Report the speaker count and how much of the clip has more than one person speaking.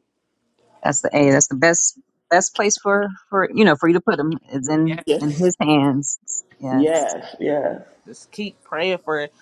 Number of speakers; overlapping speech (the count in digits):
3, about 7%